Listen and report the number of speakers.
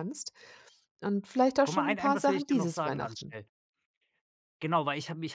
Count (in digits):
2